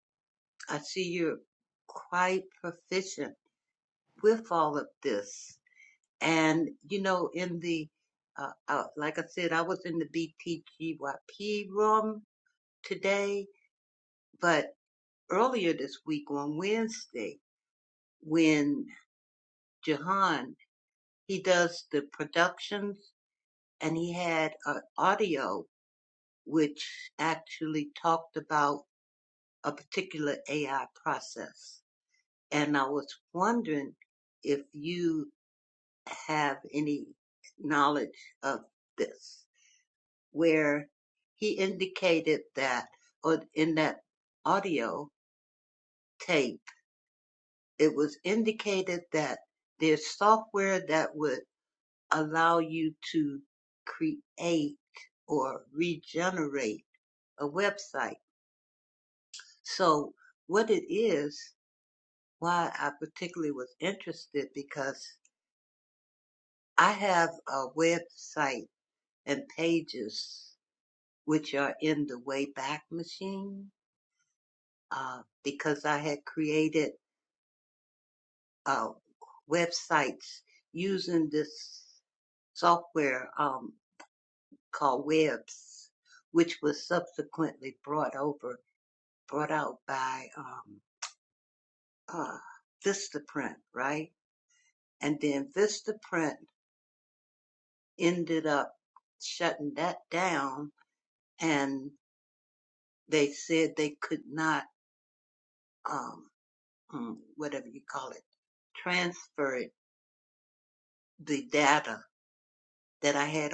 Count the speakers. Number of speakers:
1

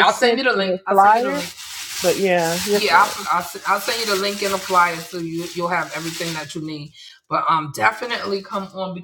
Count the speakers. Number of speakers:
2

